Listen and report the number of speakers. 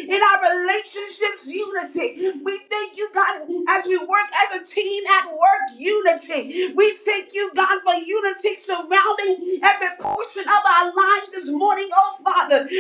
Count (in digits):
1